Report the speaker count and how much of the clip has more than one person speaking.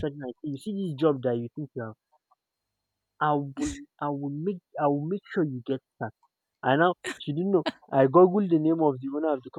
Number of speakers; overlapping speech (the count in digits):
1, no overlap